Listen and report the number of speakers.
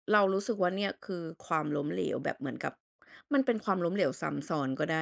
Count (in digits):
1